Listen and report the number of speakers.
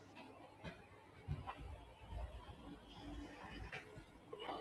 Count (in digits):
0